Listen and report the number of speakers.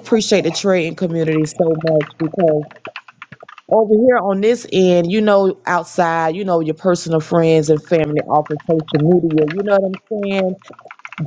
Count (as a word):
one